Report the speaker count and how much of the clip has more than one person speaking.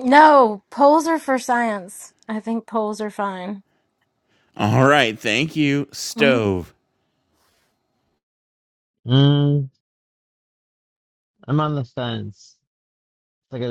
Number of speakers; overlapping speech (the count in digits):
3, about 2%